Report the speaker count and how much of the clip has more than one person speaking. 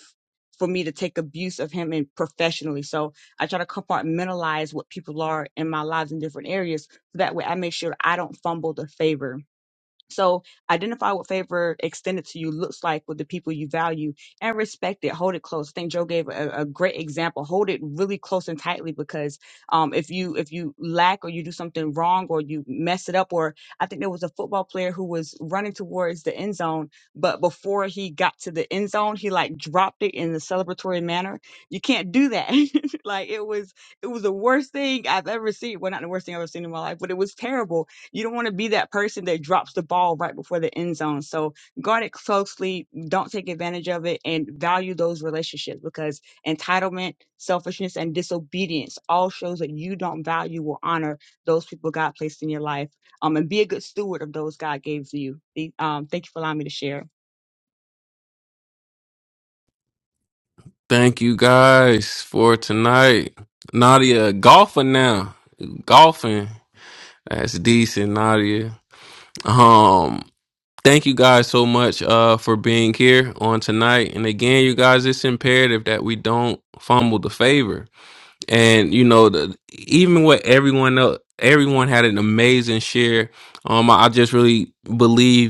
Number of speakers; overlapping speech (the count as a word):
two, no overlap